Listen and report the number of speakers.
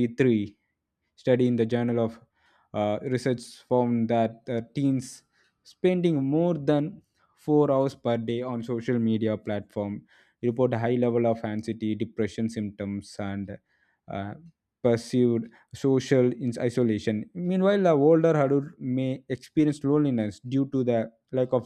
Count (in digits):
1